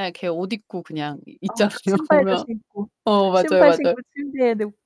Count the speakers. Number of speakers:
2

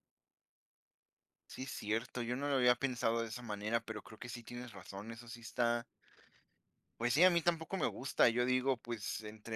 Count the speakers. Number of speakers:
1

